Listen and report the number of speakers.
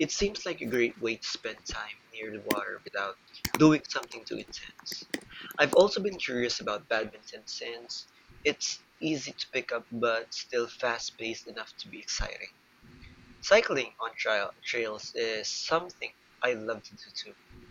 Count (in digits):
1